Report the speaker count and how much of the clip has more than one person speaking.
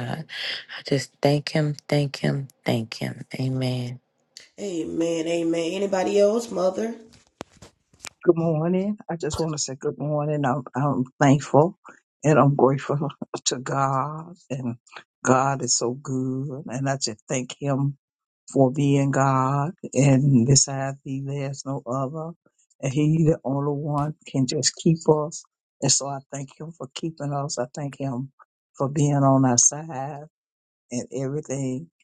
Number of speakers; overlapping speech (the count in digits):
3, no overlap